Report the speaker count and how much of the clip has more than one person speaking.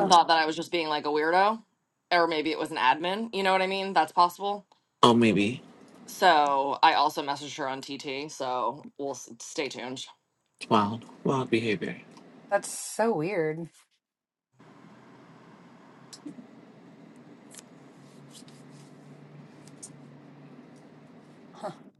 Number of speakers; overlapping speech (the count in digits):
3, about 1%